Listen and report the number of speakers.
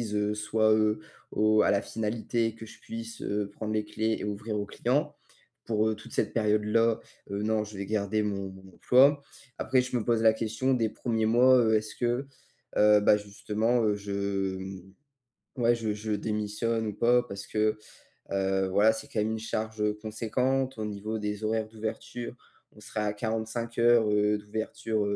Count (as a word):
one